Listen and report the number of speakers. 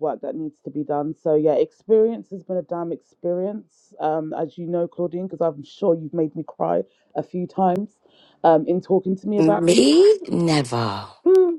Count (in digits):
2